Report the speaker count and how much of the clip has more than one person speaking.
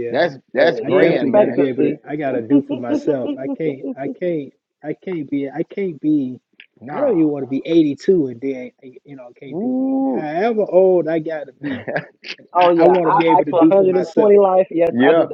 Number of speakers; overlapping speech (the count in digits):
3, about 31%